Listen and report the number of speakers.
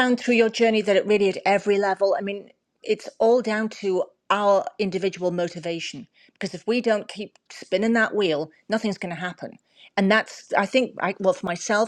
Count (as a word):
one